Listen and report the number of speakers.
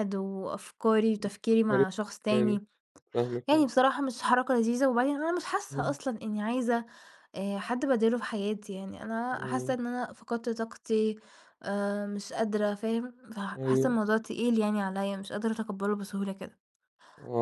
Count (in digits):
2